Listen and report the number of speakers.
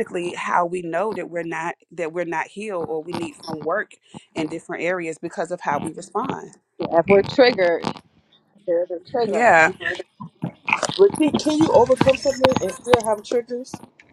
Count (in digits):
3